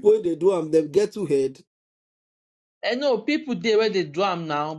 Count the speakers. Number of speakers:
2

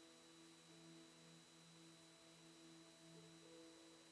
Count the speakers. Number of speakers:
0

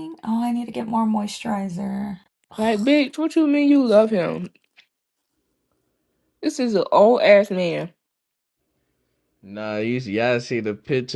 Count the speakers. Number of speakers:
3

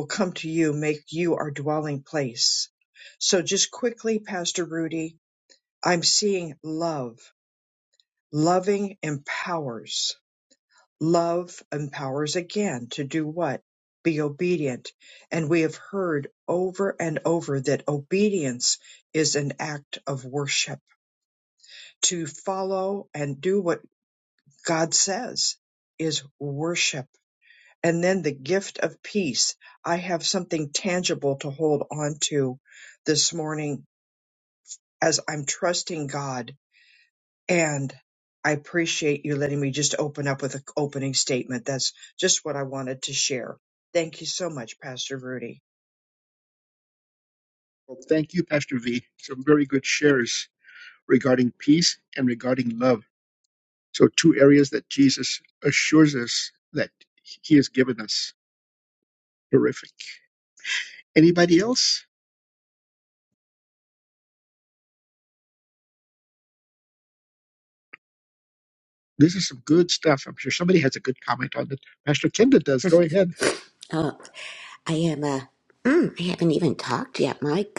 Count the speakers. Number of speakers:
3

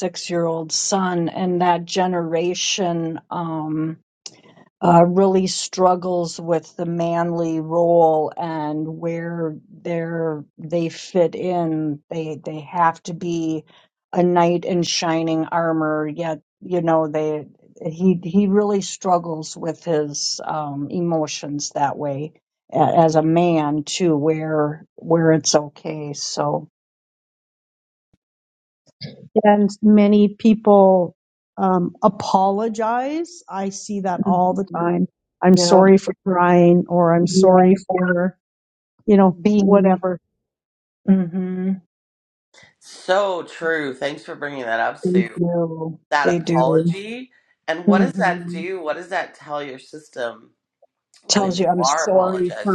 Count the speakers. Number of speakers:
3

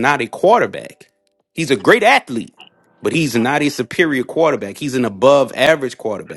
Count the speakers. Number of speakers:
1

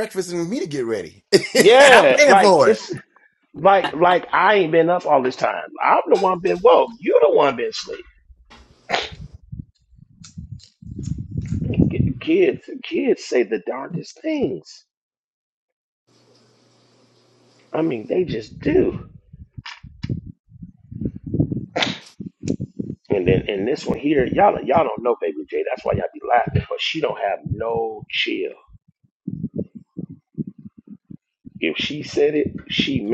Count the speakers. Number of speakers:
2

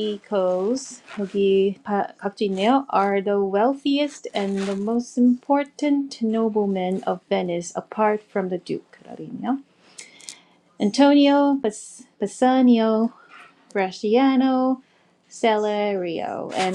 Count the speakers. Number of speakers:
1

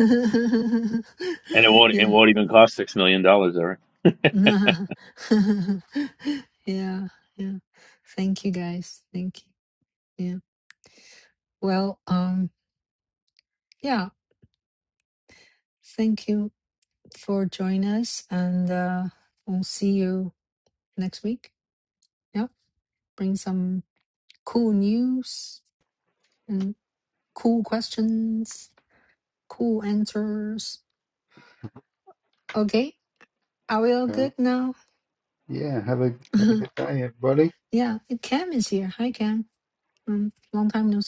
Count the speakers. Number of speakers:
3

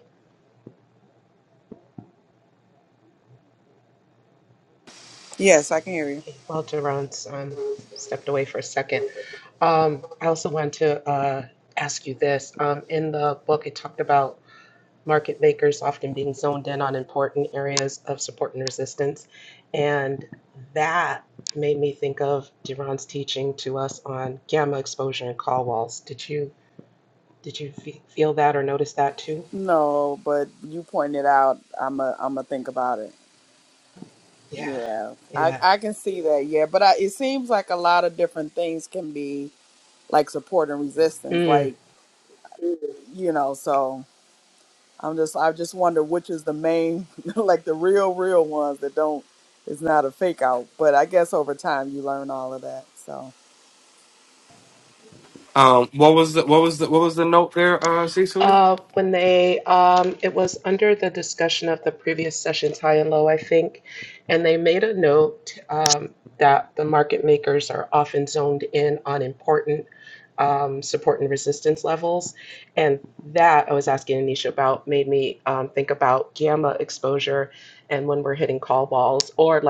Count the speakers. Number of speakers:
3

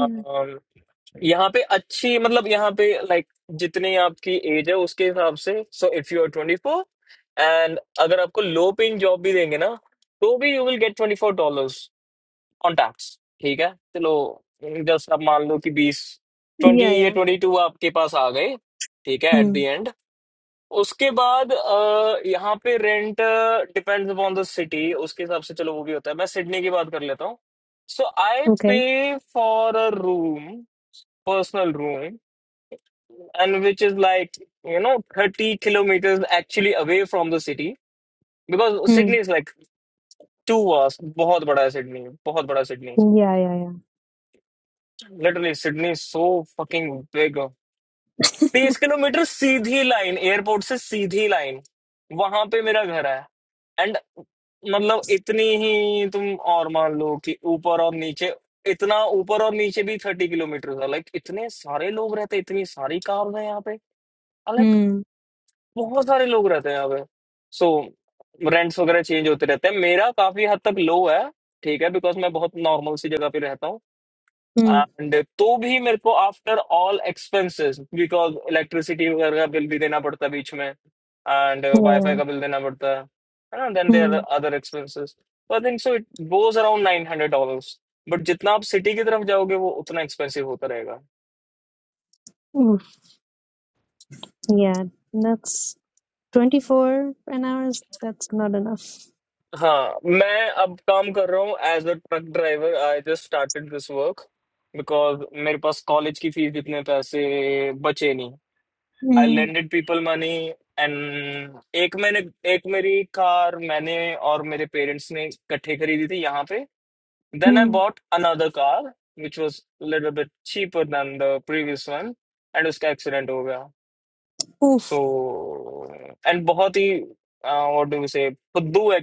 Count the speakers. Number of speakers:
2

